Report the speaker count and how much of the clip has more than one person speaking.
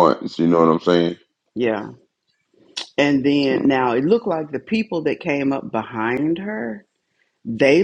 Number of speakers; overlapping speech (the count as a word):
two, no overlap